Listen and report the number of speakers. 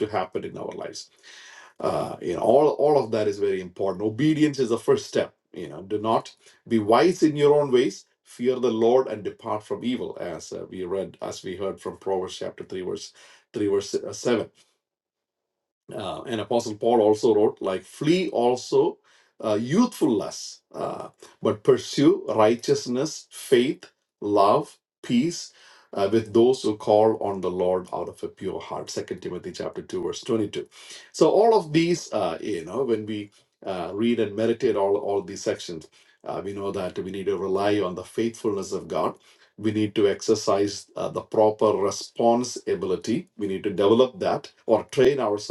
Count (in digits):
1